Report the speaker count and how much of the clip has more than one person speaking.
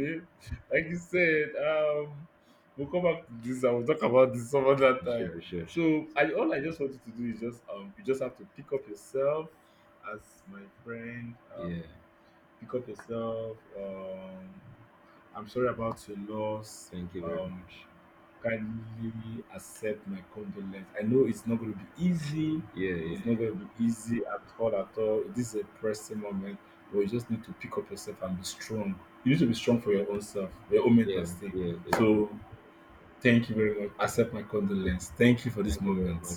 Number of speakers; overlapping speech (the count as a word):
two, about 6%